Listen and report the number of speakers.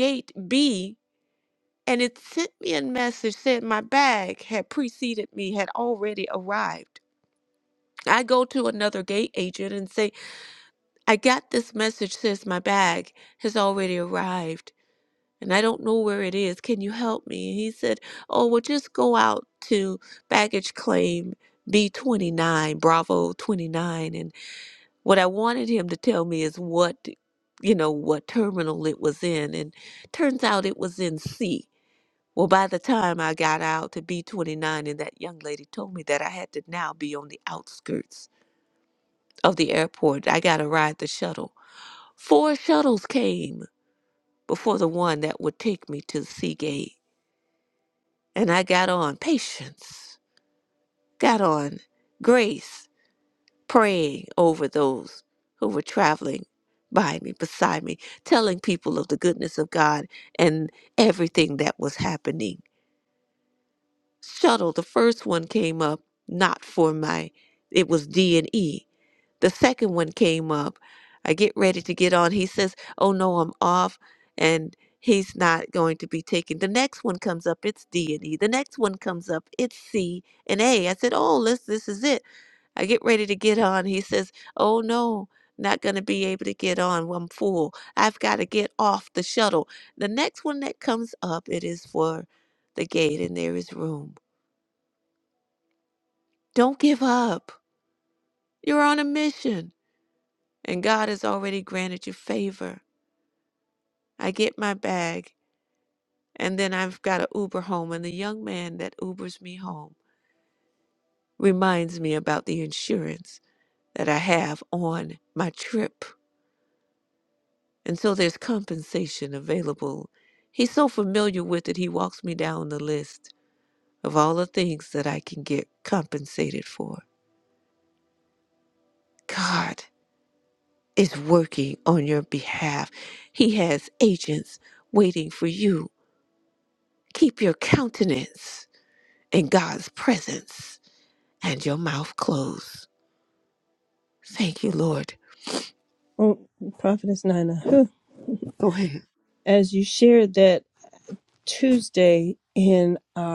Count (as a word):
two